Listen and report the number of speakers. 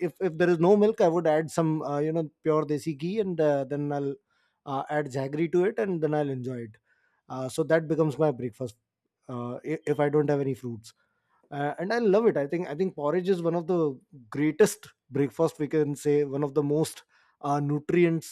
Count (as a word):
one